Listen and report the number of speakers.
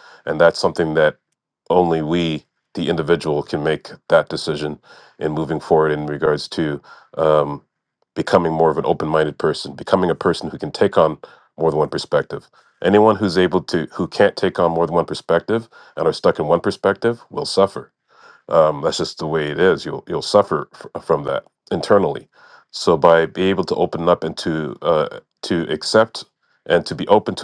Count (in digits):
1